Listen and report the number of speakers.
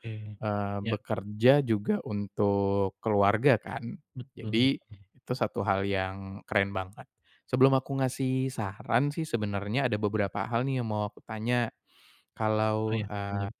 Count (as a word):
two